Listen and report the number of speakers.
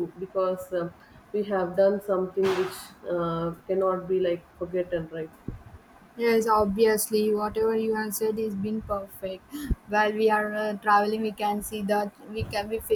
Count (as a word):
two